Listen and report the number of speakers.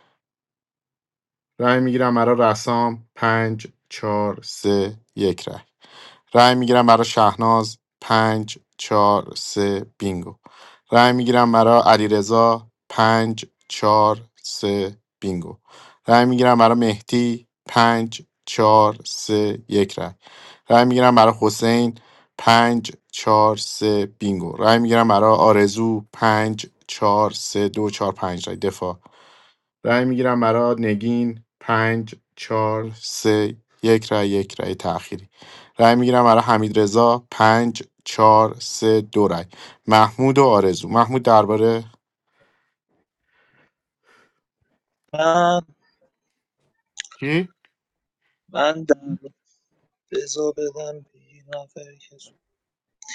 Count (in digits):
2